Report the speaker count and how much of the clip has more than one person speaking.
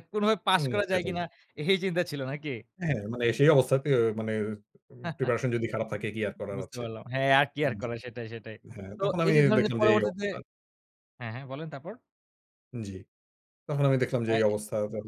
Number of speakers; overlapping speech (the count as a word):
two, about 17%